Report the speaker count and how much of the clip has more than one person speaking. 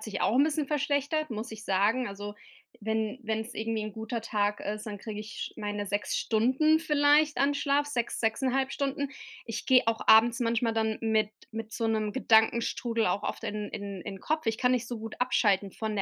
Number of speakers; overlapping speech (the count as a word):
one, no overlap